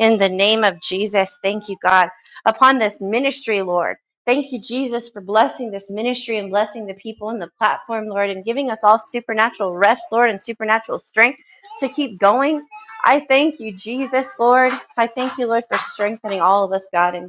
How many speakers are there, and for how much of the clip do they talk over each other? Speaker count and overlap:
1, no overlap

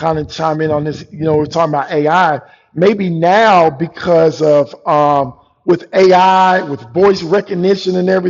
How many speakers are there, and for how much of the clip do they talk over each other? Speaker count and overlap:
1, no overlap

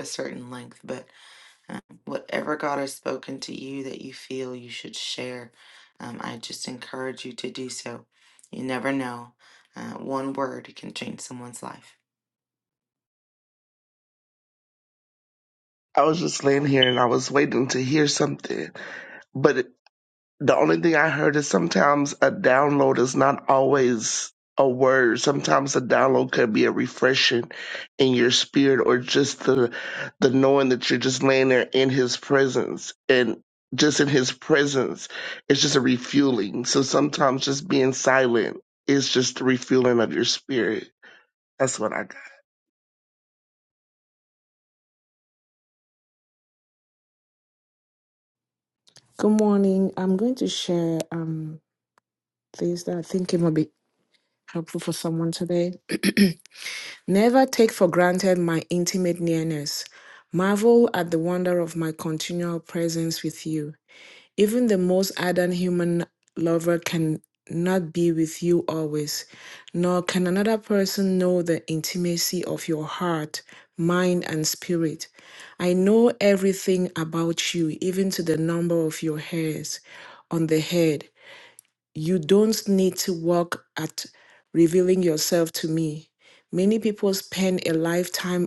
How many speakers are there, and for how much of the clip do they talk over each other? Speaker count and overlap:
3, no overlap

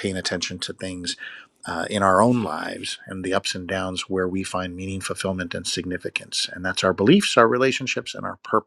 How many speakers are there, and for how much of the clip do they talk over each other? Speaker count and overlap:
1, no overlap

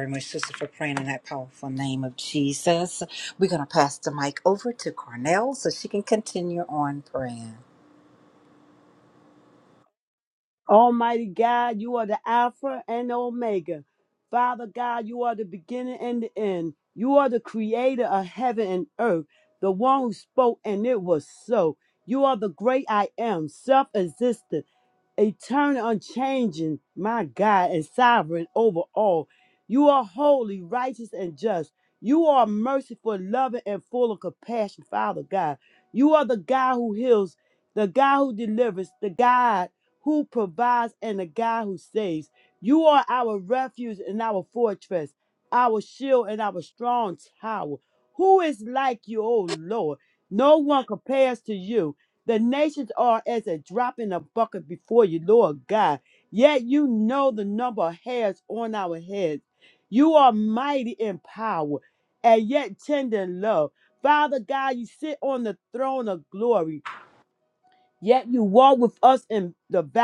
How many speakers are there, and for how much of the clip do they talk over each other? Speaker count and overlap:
2, no overlap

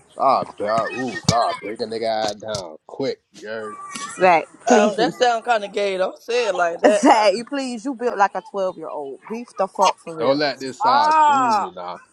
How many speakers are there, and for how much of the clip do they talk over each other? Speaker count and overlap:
3, about 16%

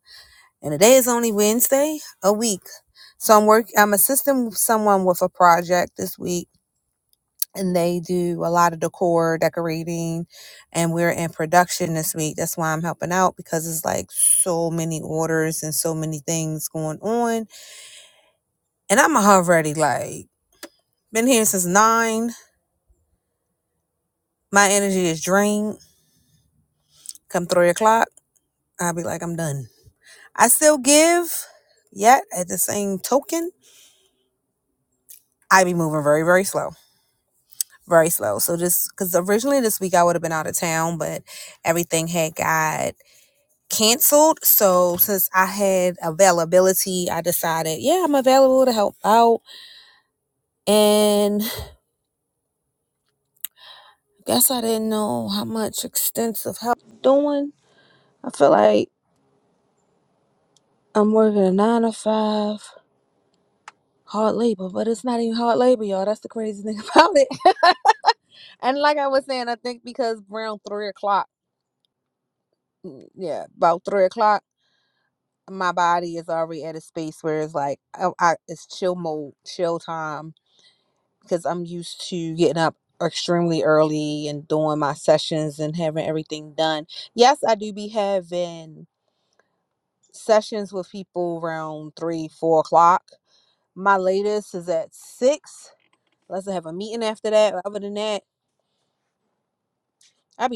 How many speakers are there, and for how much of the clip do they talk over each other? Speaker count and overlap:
1, no overlap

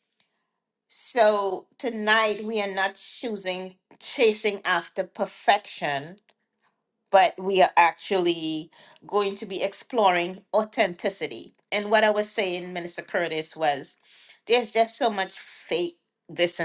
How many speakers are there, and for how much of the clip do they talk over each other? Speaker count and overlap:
1, no overlap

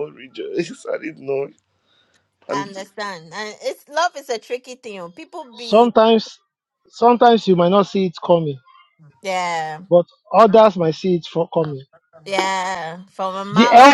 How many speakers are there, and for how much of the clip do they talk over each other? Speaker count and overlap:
3, about 7%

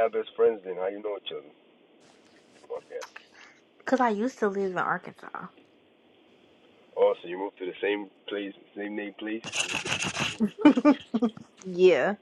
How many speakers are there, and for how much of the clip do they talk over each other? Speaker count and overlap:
2, no overlap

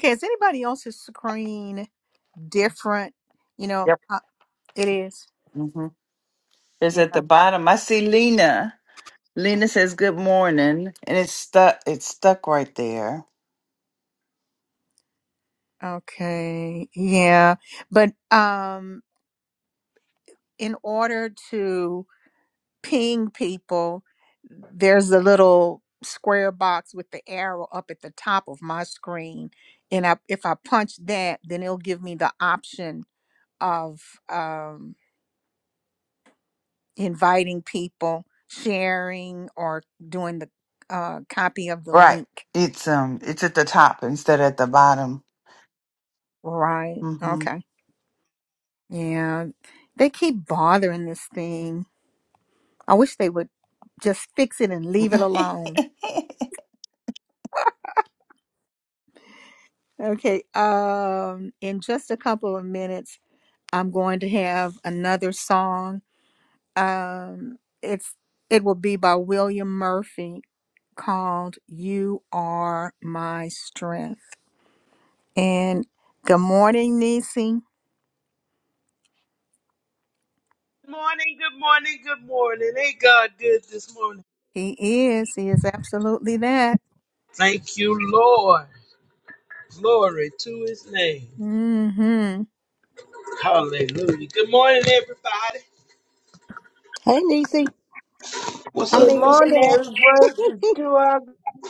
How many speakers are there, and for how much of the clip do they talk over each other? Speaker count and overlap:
5, about 2%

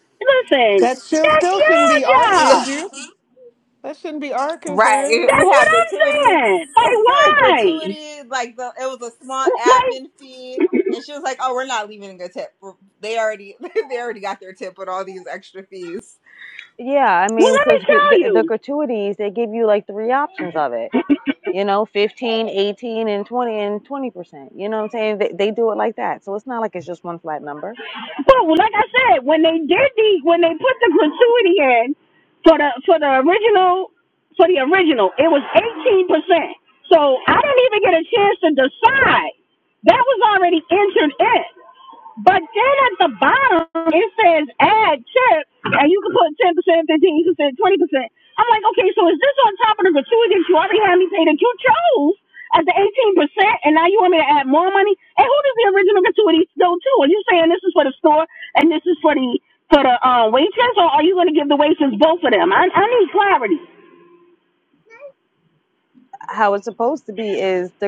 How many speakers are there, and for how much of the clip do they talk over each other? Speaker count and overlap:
4, about 8%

